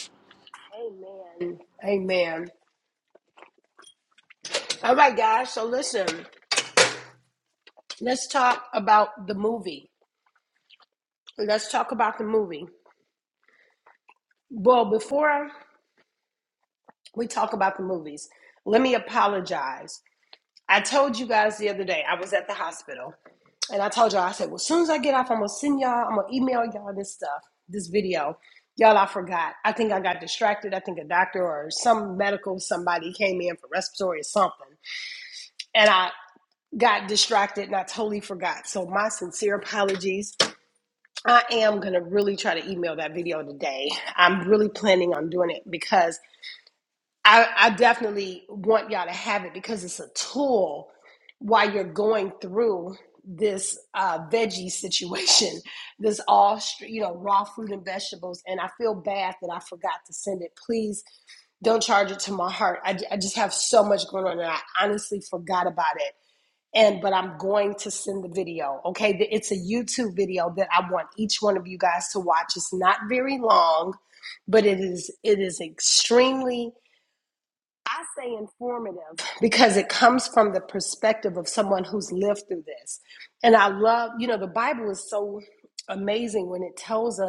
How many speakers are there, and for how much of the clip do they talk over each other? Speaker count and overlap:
1, no overlap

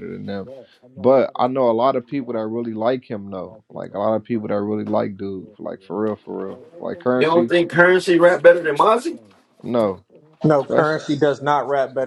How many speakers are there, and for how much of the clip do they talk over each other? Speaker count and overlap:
3, about 4%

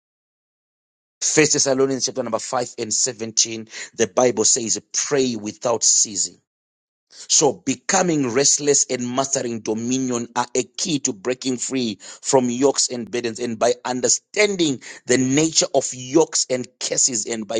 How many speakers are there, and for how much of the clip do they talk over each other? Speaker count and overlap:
1, no overlap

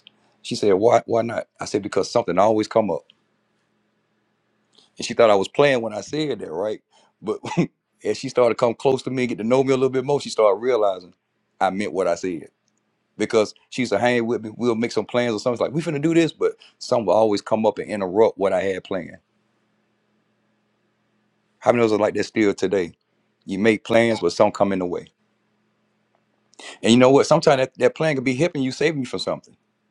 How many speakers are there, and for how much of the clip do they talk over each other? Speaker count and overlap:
1, no overlap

